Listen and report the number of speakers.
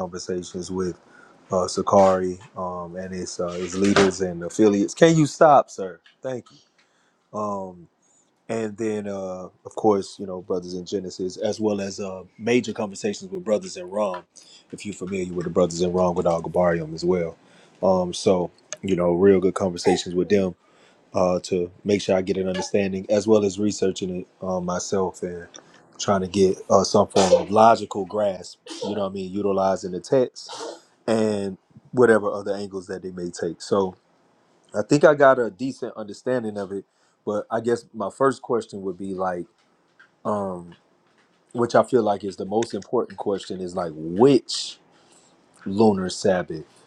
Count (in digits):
1